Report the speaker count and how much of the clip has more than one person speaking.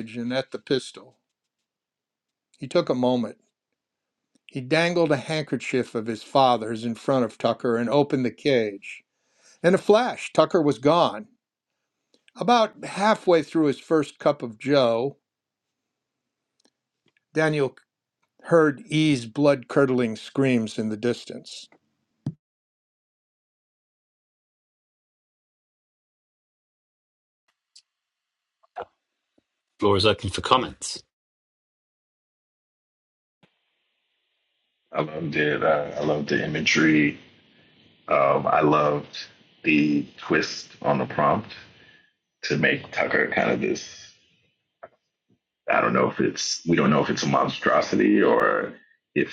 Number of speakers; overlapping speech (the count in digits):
3, no overlap